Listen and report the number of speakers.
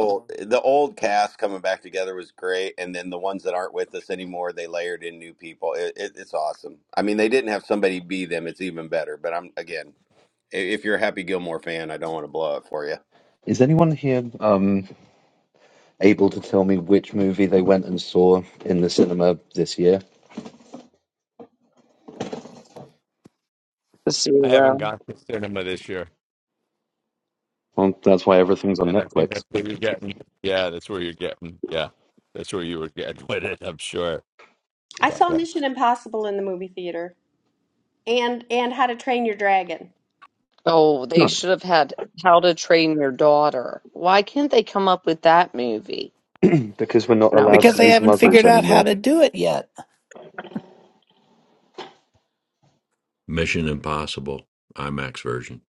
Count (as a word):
seven